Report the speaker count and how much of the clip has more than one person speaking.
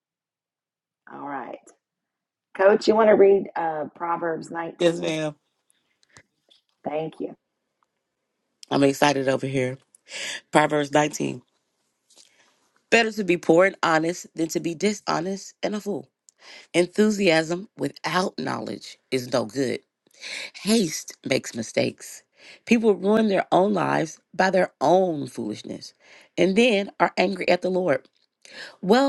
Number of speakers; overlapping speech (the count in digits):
2, about 1%